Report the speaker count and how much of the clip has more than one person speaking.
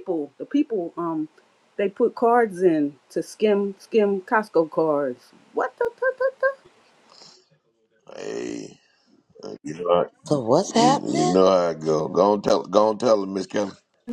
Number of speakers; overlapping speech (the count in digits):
3, about 5%